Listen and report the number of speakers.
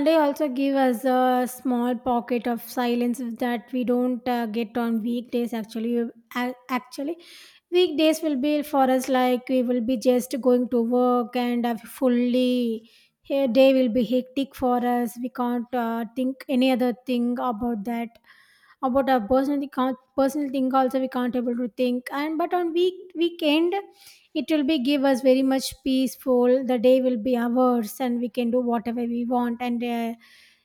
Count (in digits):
1